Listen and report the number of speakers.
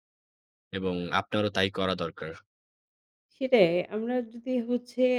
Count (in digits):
2